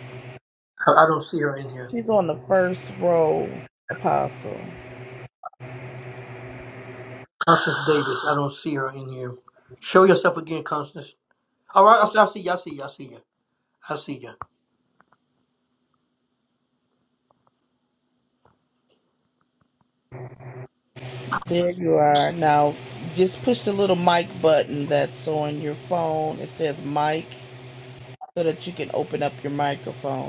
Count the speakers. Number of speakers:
two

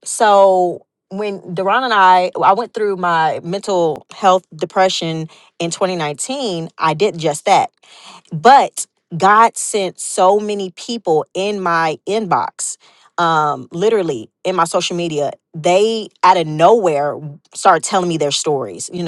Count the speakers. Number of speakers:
one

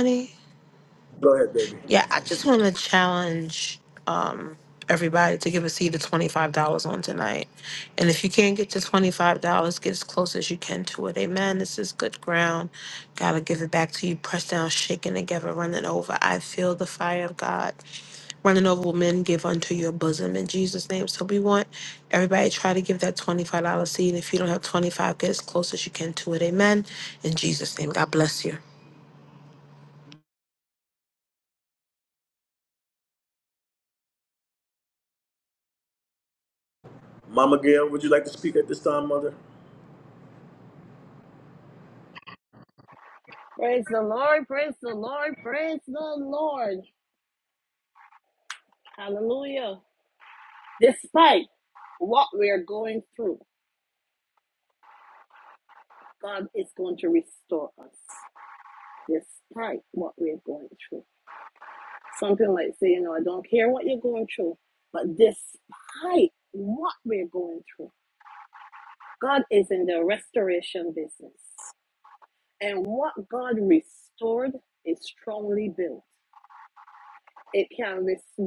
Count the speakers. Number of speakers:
three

